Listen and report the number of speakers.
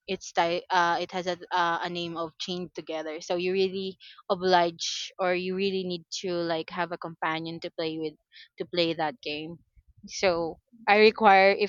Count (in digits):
1